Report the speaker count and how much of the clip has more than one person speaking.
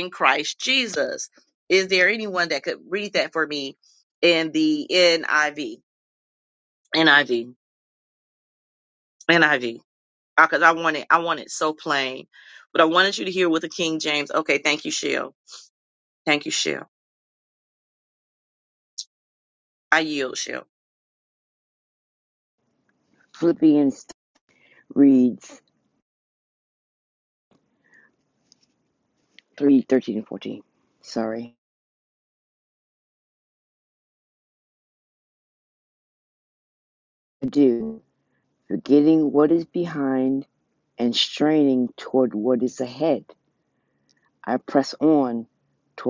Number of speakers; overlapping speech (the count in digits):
2, no overlap